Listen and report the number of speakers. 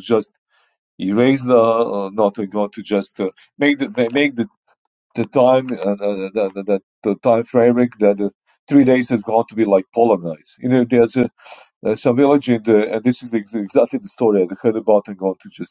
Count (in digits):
1